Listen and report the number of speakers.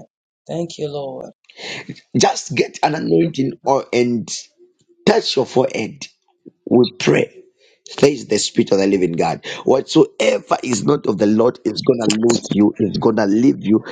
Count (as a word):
two